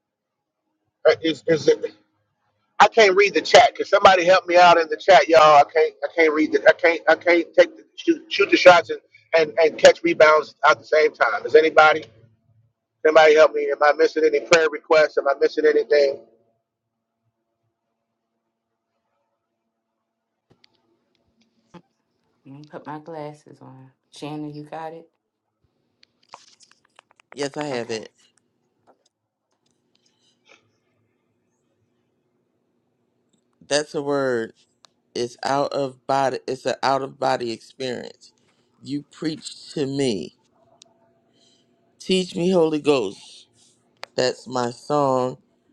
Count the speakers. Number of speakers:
3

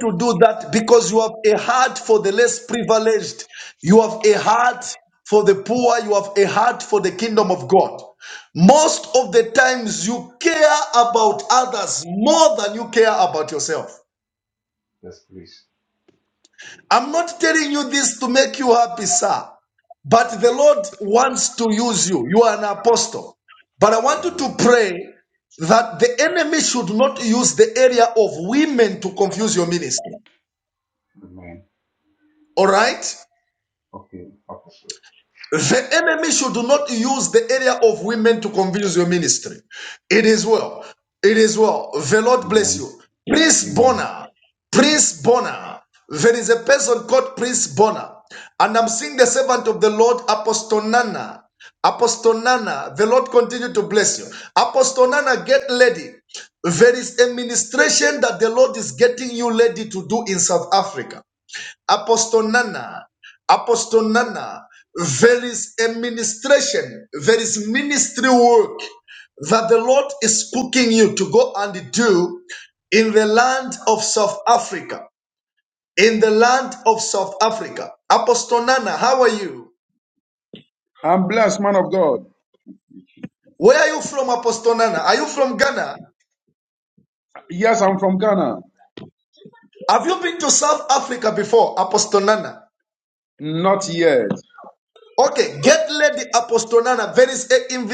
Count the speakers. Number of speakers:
3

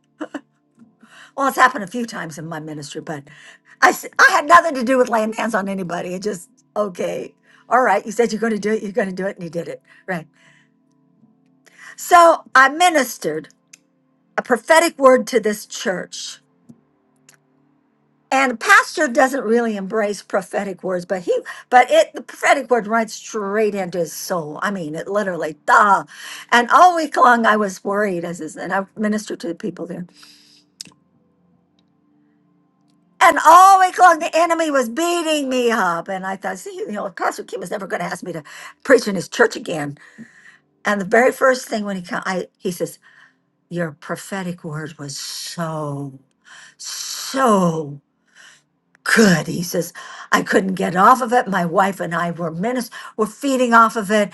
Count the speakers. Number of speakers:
1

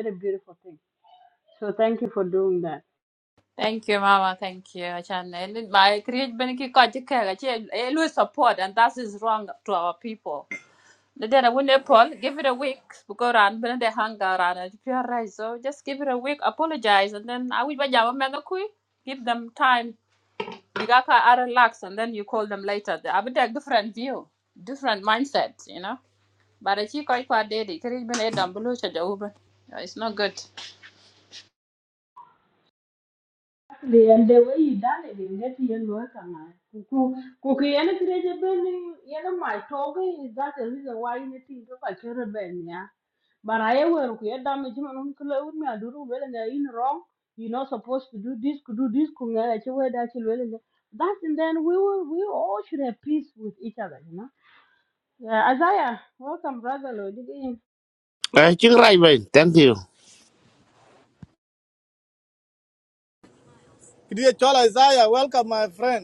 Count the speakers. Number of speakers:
4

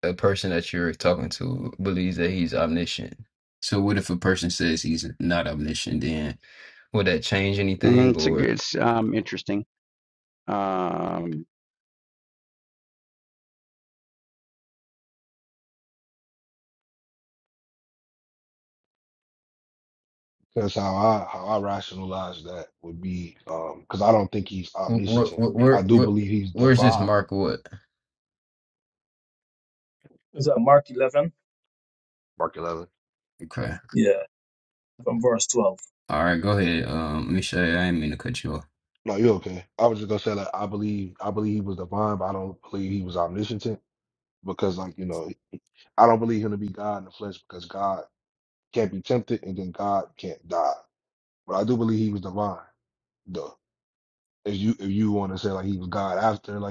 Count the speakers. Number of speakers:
4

